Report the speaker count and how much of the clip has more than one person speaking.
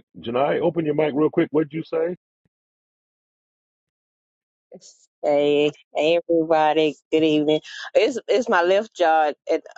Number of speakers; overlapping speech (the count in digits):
2, no overlap